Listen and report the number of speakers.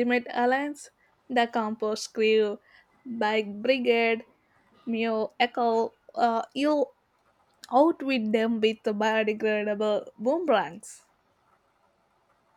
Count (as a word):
one